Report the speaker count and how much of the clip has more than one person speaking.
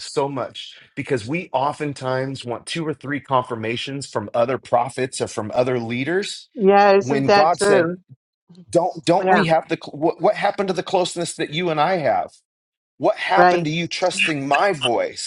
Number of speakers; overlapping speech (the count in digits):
2, about 9%